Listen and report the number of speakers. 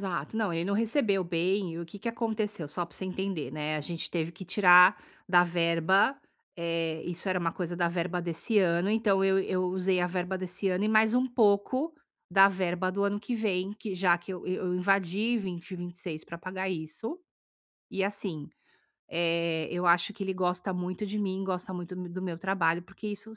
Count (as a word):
one